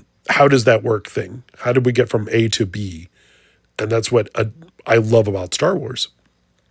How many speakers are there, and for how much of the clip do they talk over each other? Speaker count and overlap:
one, no overlap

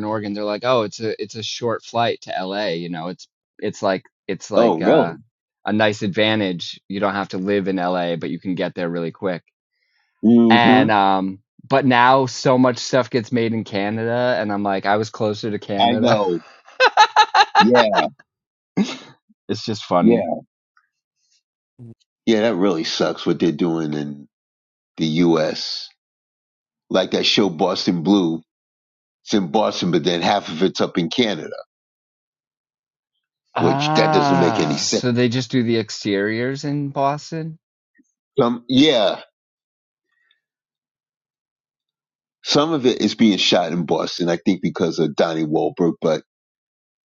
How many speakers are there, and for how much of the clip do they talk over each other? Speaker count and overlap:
two, about 6%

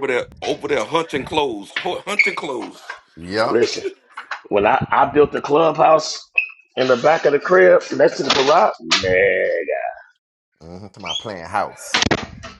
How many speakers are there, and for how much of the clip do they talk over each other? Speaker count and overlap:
three, about 1%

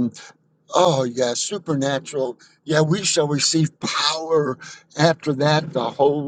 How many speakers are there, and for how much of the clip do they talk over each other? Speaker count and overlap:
one, no overlap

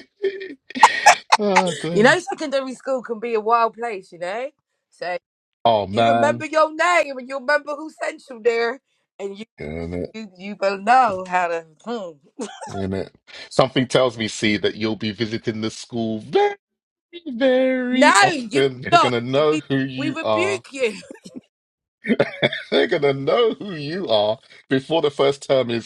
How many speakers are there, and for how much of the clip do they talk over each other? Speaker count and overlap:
two, about 10%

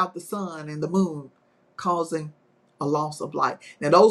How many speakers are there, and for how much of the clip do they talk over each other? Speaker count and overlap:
one, no overlap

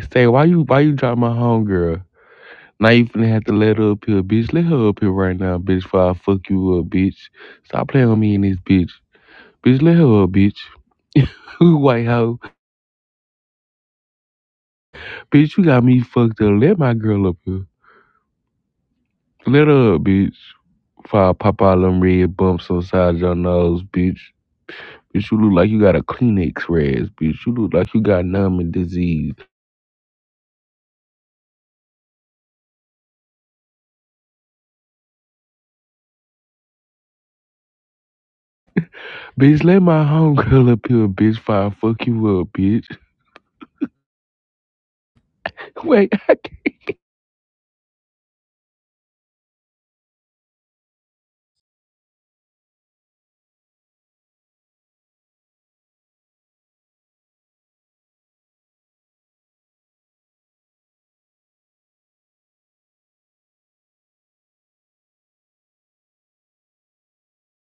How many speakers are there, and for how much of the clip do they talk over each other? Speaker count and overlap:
one, no overlap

